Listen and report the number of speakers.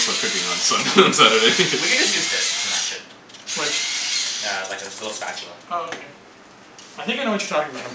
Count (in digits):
3